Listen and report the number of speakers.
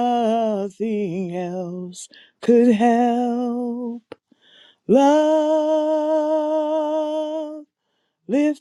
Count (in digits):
1